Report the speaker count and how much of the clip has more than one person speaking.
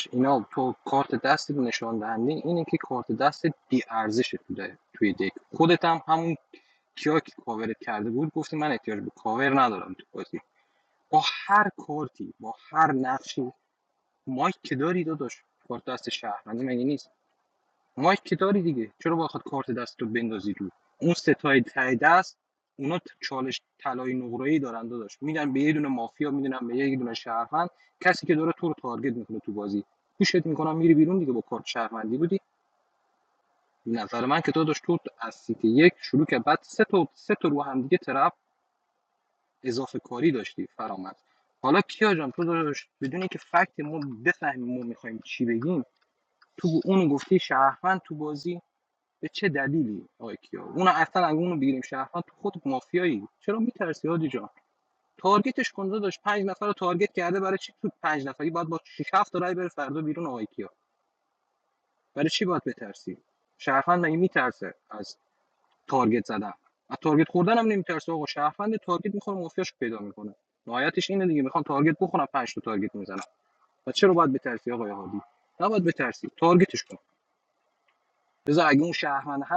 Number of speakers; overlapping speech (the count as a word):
one, no overlap